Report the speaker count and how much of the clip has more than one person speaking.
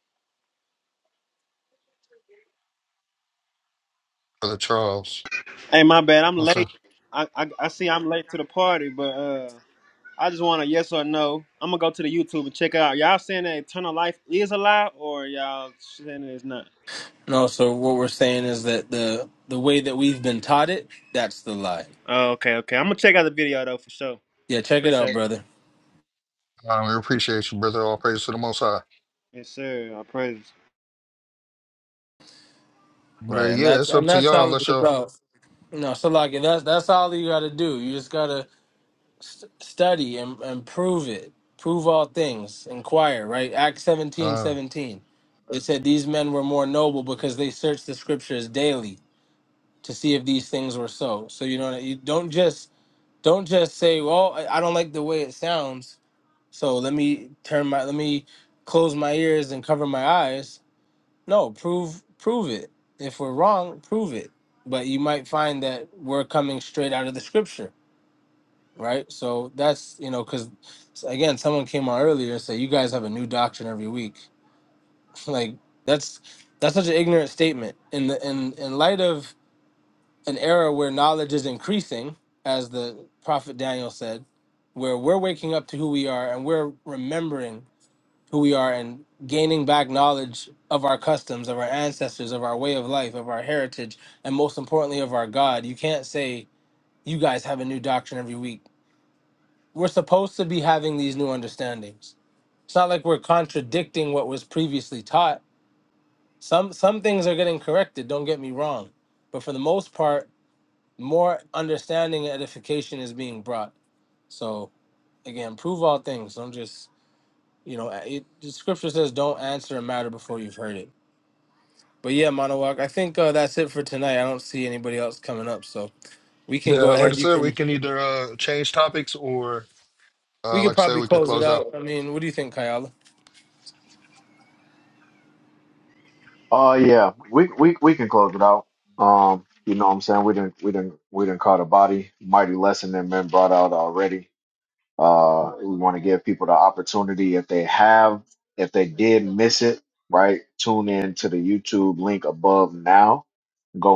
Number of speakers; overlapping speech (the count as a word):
four, about 3%